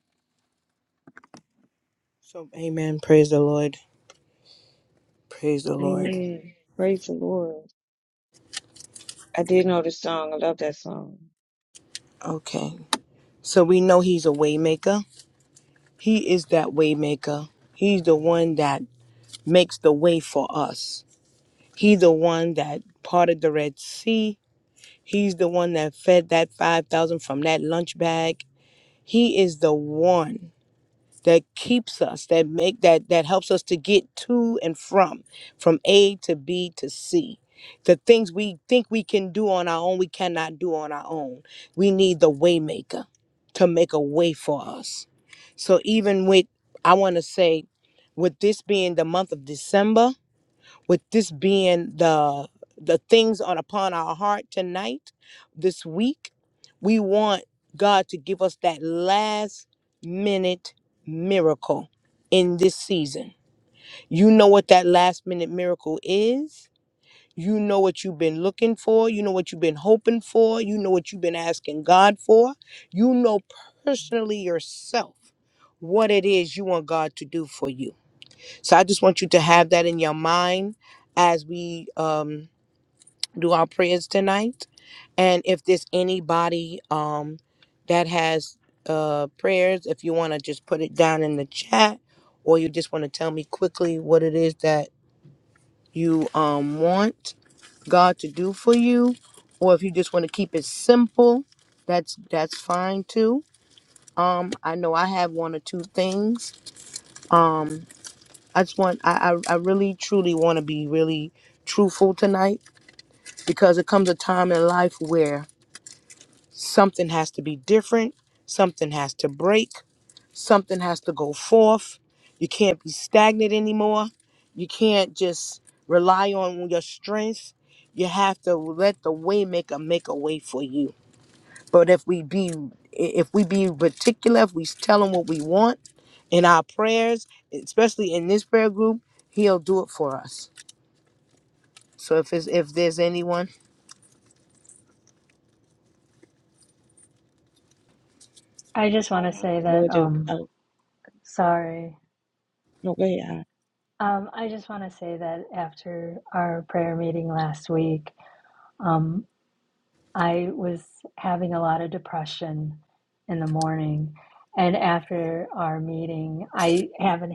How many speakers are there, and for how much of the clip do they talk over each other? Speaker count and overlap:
three, about 1%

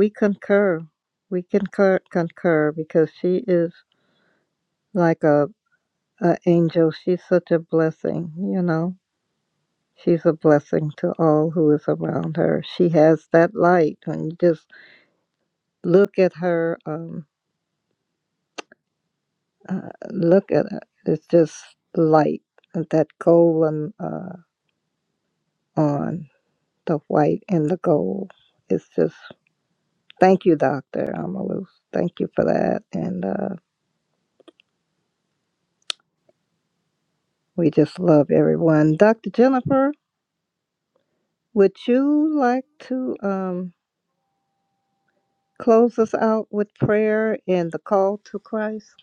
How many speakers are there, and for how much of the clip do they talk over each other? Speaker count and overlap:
one, no overlap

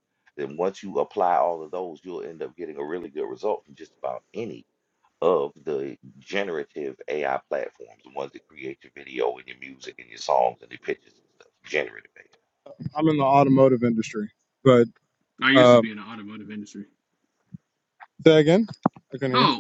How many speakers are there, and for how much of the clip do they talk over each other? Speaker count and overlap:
three, about 2%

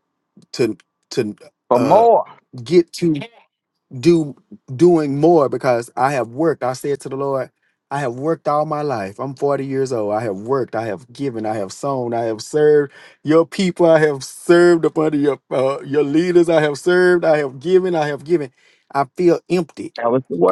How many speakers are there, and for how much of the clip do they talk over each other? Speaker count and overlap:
two, about 2%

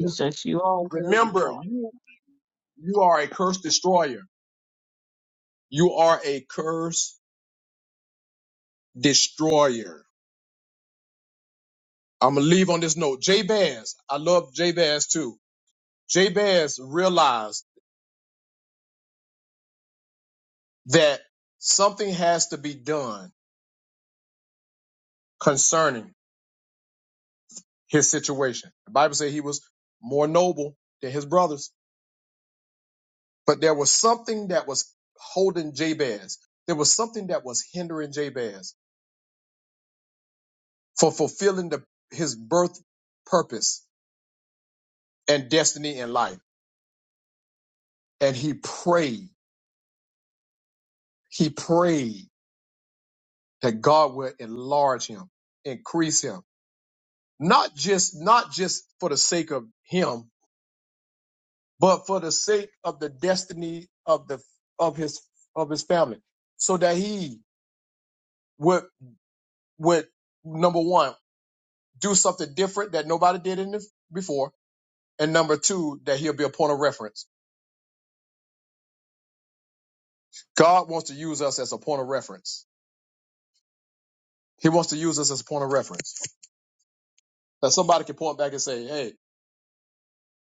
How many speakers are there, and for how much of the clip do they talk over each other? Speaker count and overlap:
two, about 1%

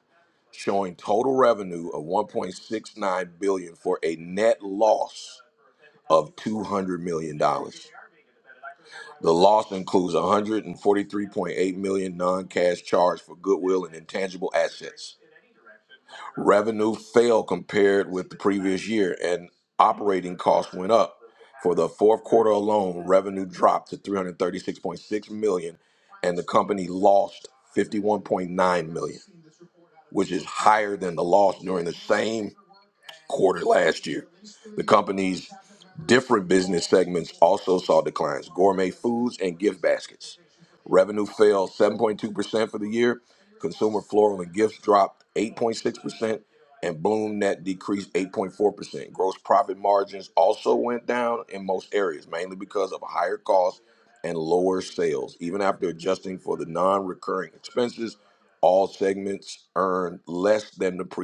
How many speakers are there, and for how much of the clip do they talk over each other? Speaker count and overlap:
one, no overlap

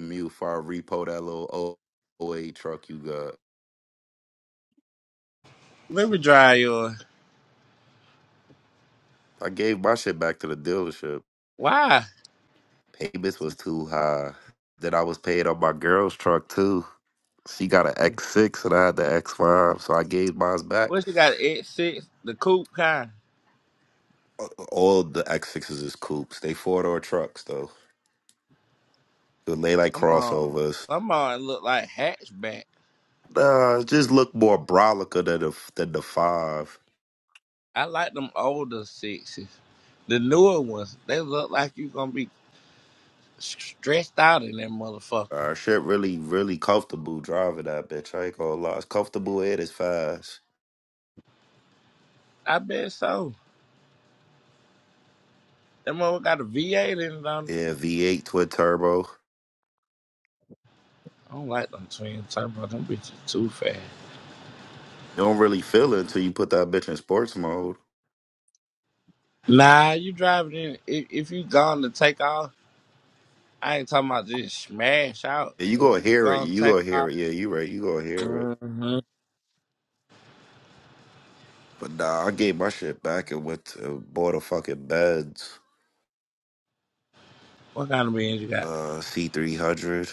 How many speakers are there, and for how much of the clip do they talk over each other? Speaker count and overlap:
two, about 3%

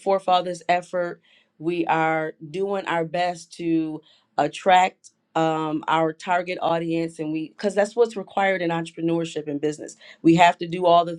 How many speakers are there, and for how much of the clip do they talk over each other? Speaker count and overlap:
one, no overlap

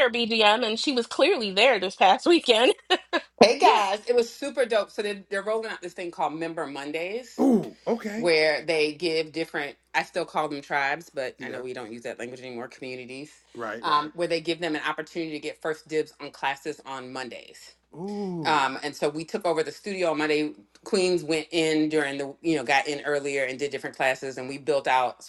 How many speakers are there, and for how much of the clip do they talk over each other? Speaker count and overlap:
three, about 4%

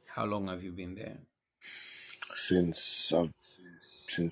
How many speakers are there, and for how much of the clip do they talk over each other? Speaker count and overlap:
two, no overlap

